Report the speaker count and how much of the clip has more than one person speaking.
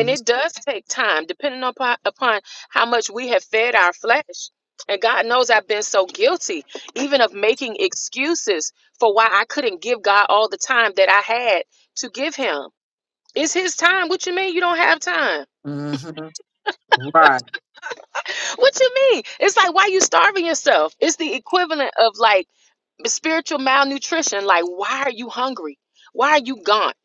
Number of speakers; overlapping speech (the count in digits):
2, about 1%